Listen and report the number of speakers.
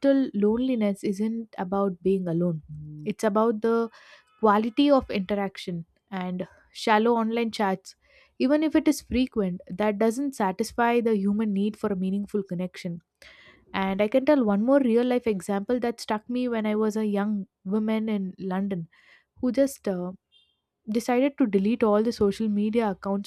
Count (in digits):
1